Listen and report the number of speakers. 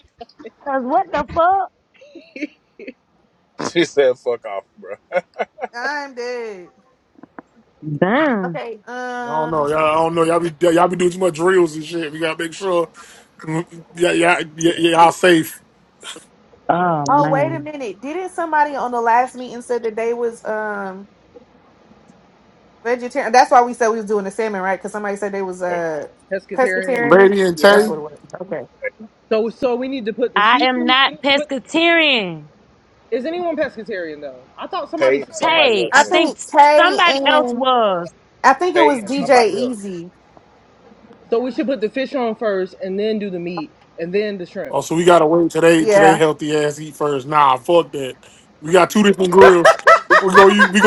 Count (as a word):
five